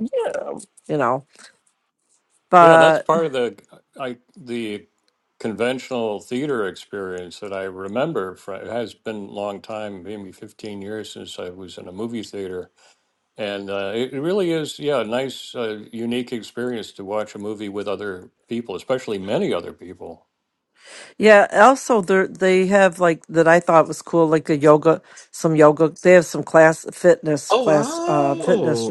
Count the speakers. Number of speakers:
3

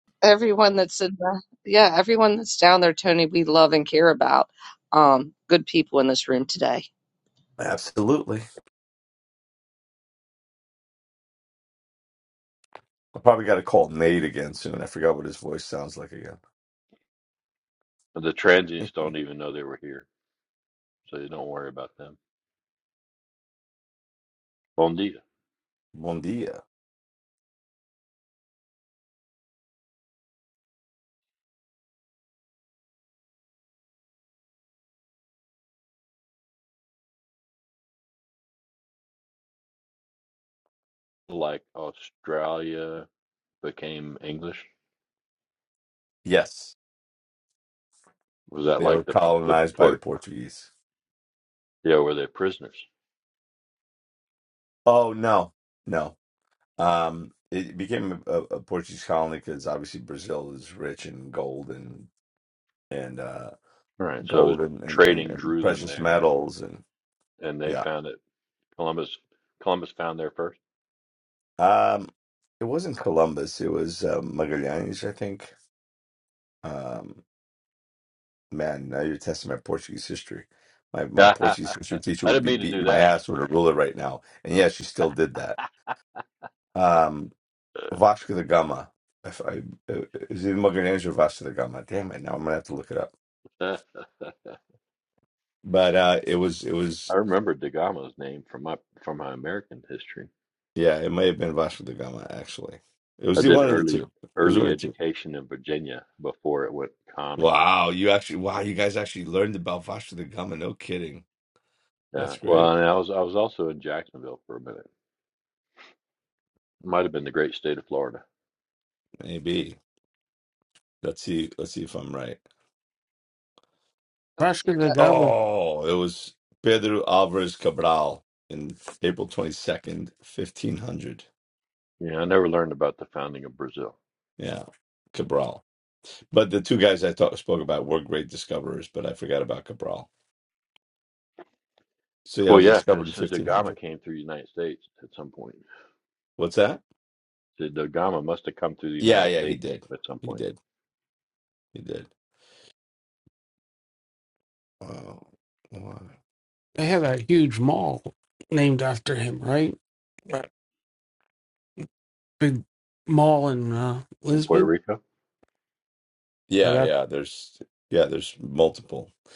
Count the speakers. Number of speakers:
4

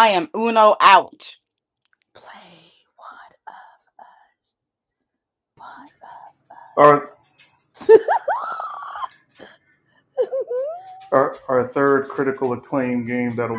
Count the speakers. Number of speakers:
3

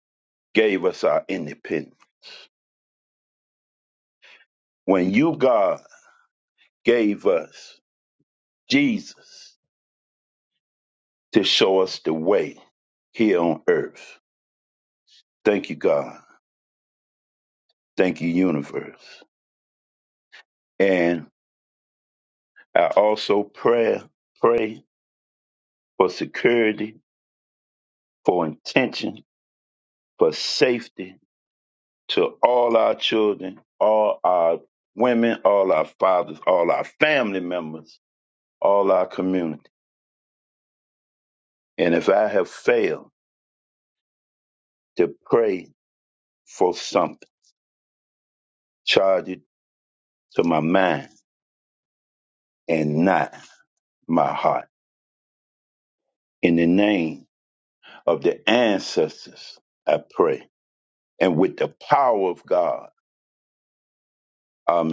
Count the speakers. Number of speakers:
1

